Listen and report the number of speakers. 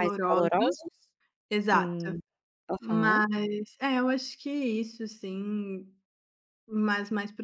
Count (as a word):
two